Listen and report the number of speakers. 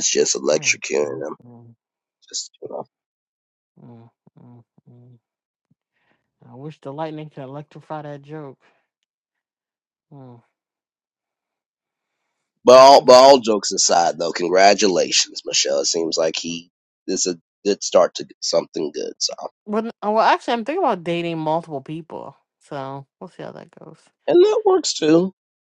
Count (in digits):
2